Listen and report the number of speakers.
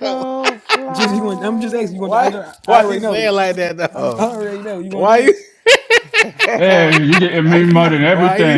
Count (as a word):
four